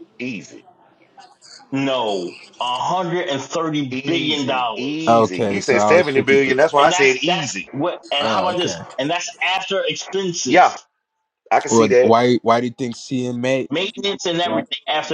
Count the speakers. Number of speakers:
3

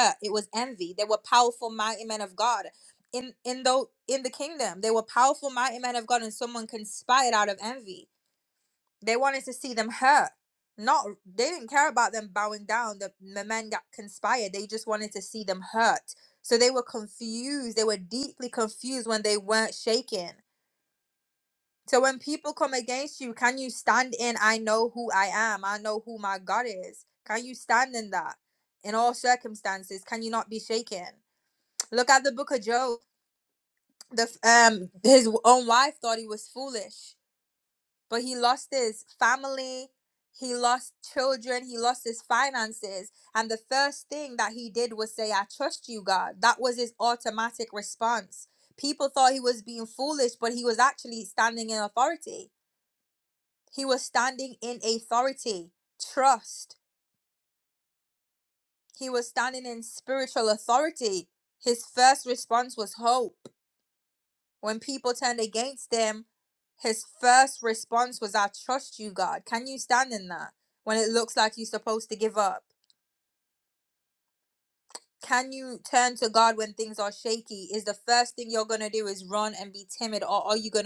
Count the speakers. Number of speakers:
1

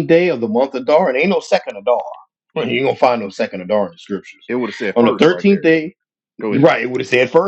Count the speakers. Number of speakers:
2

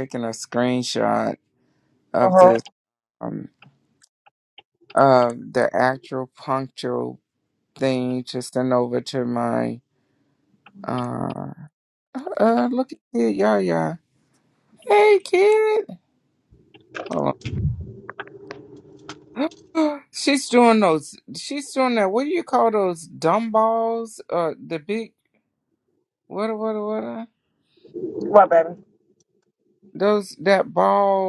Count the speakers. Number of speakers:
2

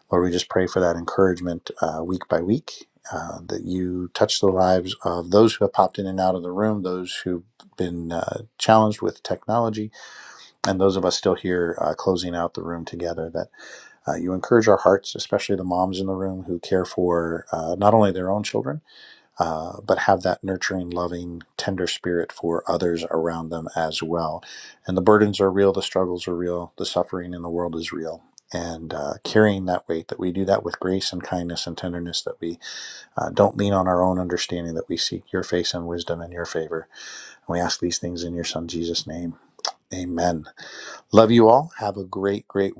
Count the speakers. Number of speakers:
1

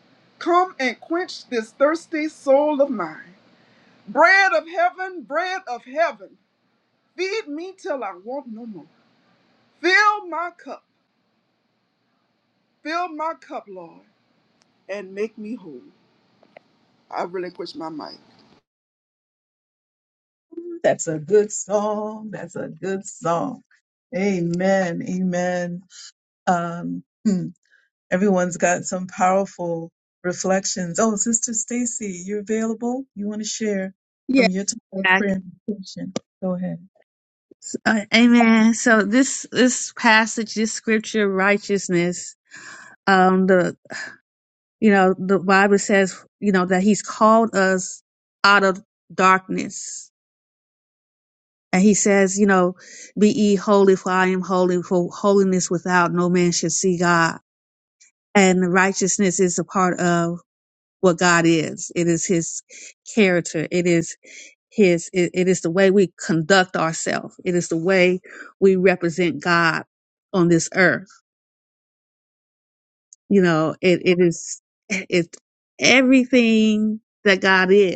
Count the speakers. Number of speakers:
3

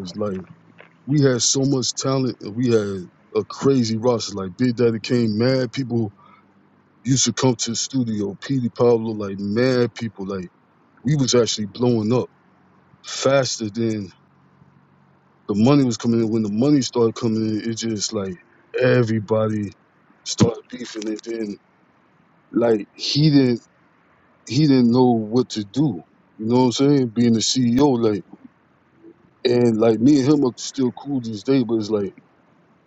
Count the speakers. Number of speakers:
1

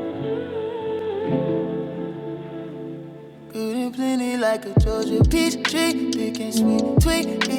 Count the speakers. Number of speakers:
0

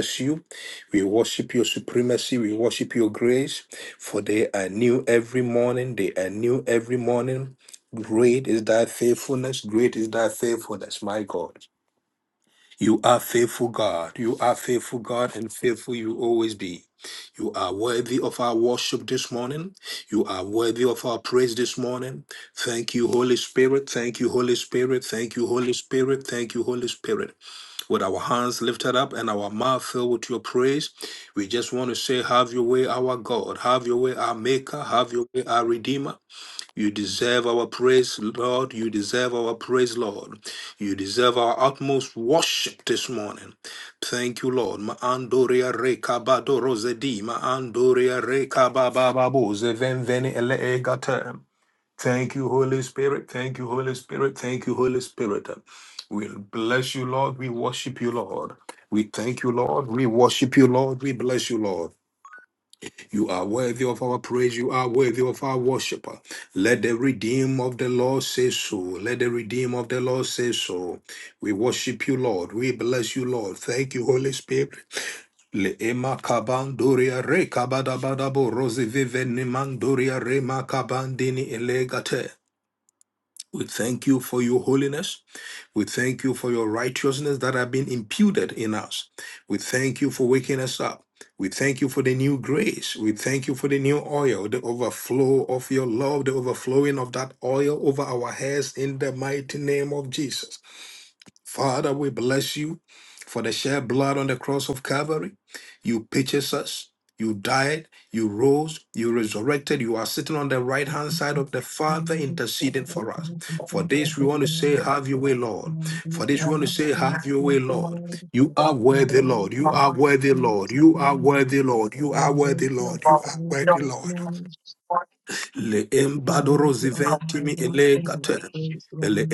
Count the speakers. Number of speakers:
2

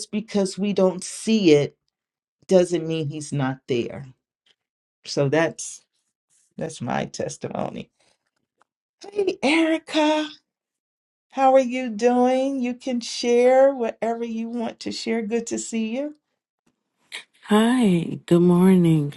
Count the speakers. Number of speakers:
2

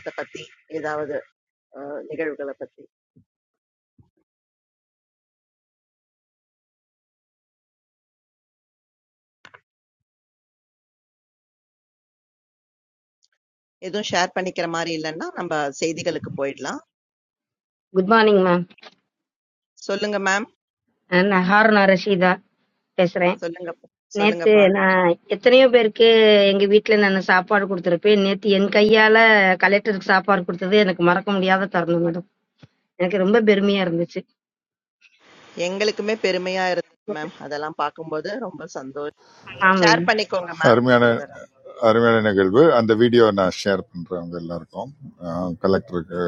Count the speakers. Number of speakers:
3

